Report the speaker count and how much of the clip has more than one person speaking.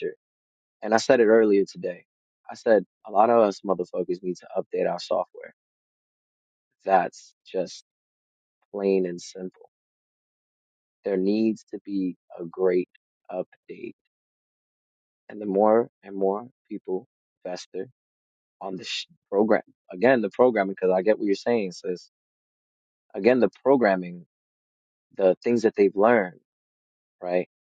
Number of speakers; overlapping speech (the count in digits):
1, no overlap